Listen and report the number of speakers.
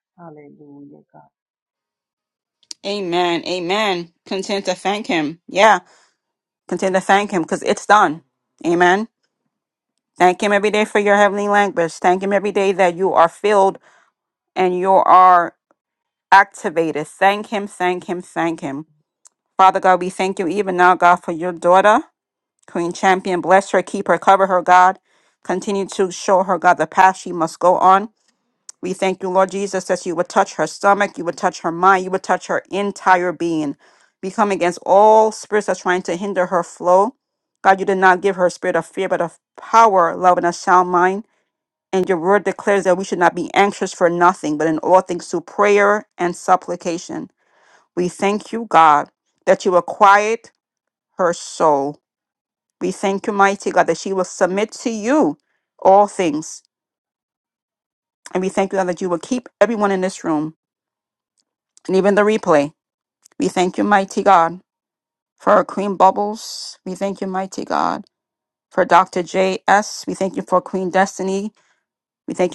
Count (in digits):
2